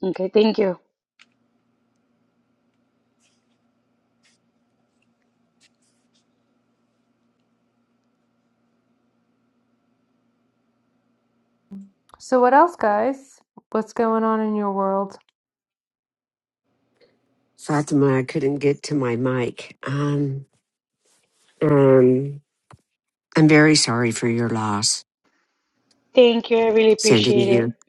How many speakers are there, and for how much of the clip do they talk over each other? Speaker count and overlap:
3, about 2%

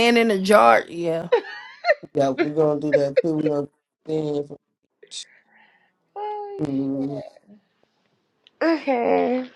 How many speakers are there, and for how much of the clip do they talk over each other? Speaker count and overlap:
3, about 6%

